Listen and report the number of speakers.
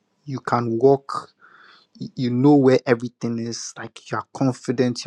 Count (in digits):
1